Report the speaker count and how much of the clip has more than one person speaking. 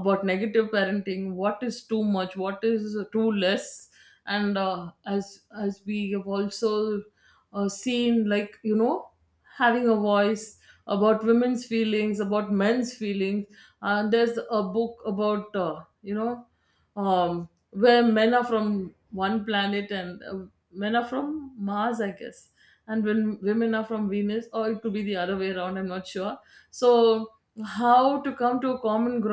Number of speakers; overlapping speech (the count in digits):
1, no overlap